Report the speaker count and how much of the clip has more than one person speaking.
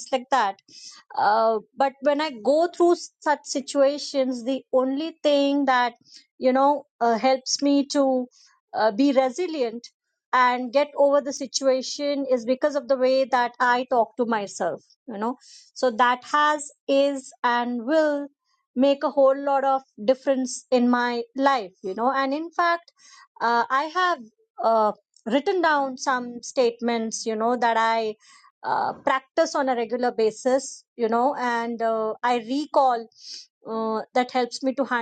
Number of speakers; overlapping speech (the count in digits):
1, no overlap